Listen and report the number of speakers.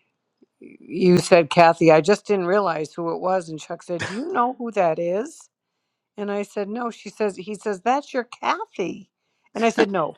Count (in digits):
1